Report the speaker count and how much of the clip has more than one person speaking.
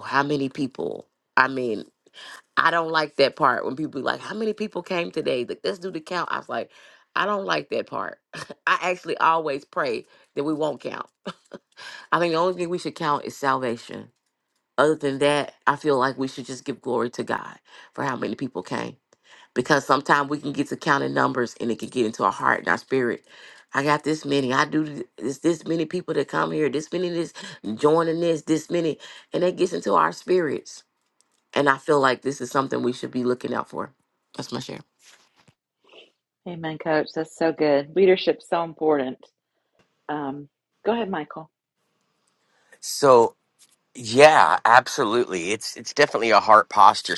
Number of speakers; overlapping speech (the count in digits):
3, no overlap